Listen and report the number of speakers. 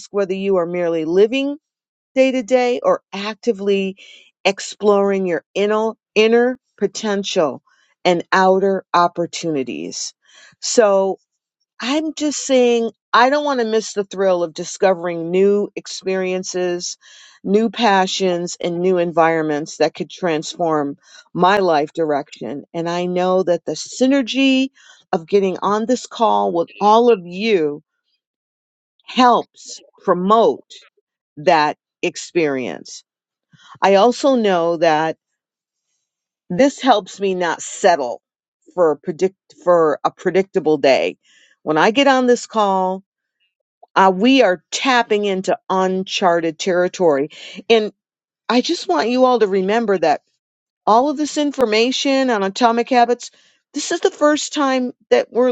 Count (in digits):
1